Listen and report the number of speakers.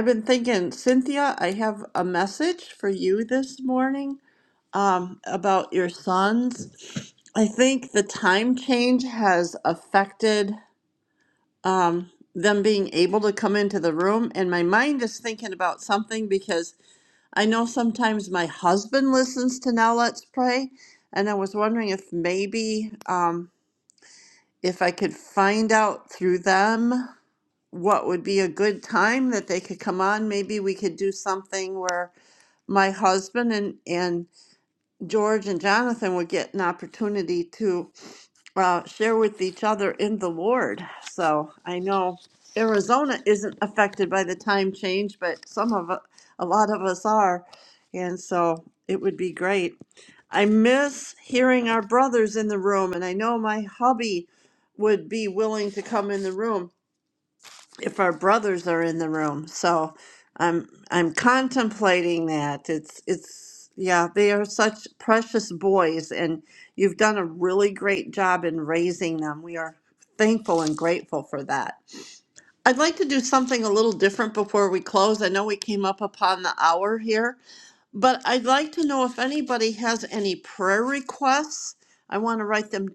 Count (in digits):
1